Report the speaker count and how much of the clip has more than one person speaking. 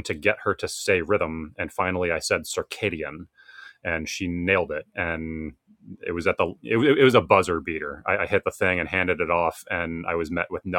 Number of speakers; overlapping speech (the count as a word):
one, no overlap